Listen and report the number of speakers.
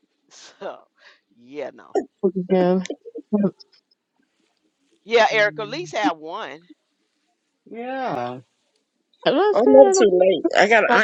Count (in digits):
3